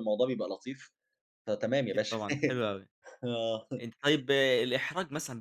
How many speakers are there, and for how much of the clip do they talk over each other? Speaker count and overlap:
2, about 5%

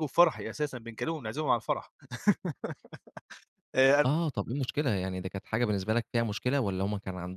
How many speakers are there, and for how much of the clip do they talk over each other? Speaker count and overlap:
2, under 1%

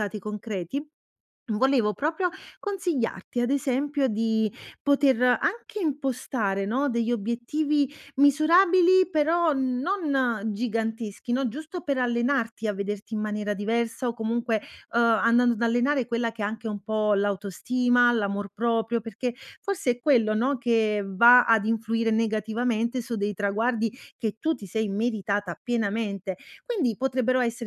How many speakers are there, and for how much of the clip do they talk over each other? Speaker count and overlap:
1, no overlap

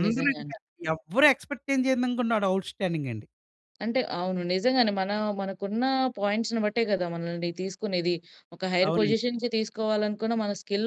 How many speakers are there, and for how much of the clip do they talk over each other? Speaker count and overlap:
2, about 8%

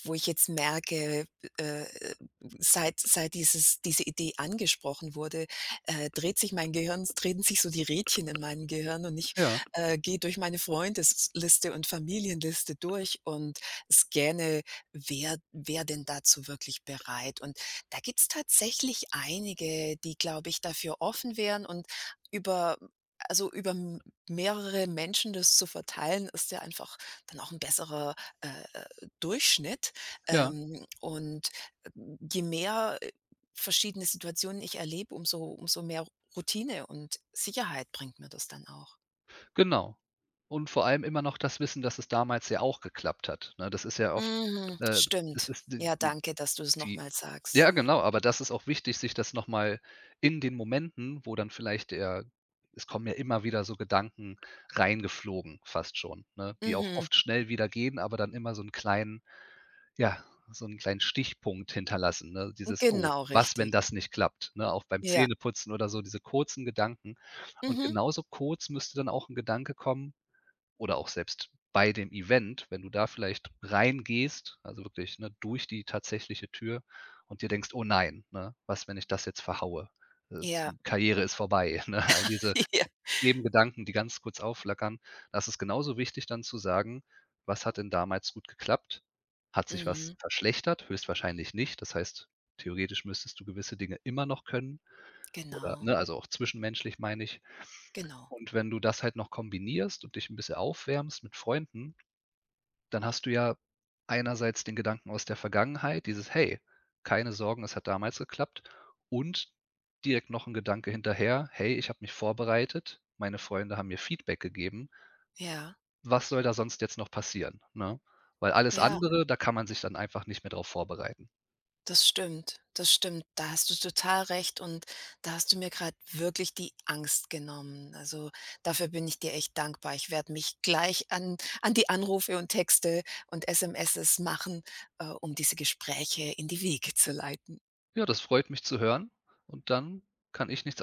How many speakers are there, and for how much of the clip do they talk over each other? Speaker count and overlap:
2, about 4%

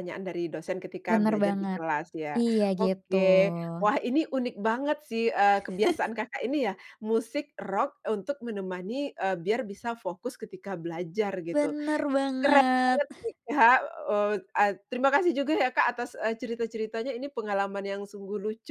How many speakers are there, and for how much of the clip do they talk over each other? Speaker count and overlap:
2, about 12%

